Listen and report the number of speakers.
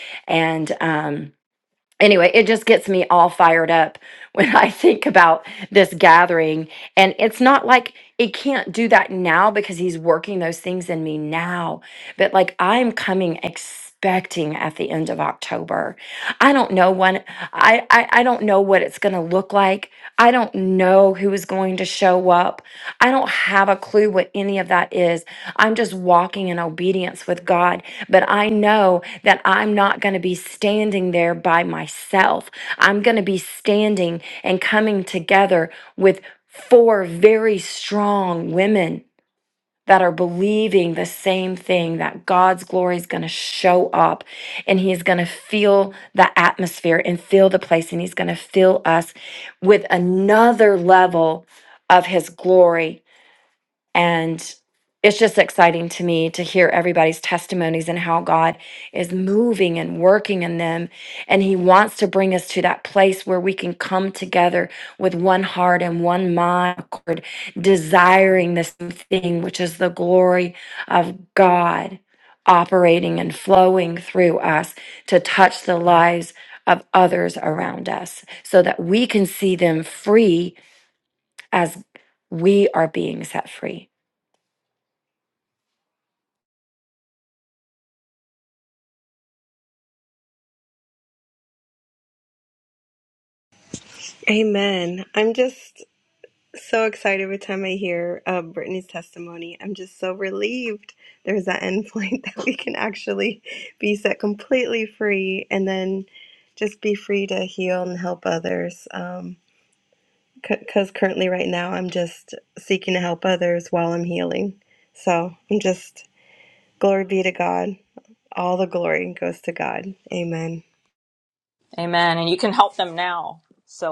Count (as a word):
three